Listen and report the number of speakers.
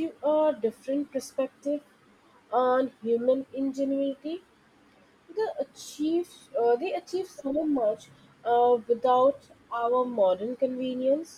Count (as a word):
one